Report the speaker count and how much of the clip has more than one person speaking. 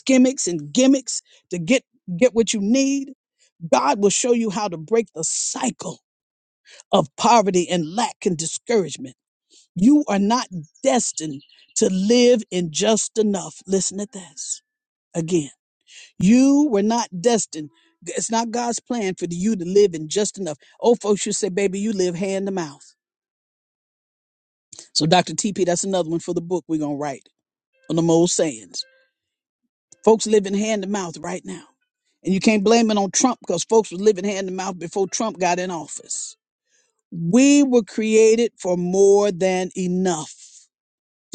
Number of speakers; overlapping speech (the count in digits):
1, no overlap